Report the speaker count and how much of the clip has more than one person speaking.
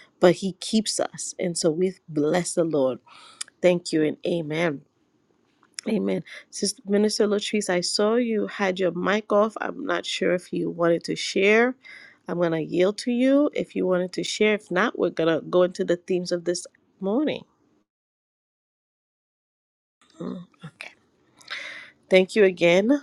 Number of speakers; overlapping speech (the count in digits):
1, no overlap